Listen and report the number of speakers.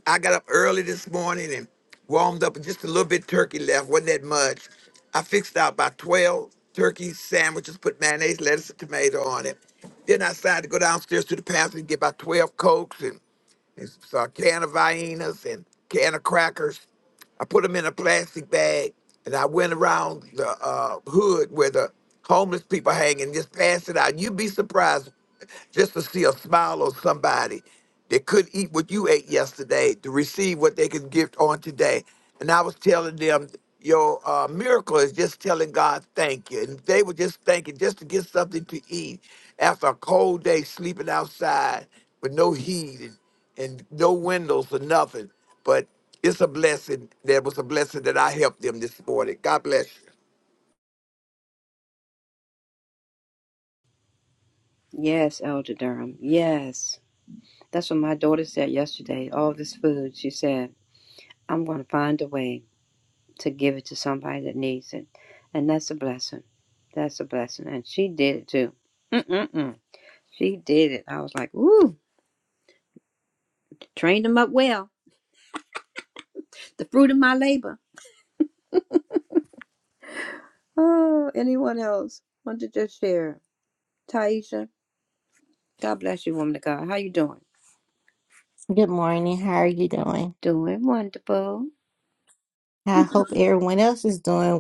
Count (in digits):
3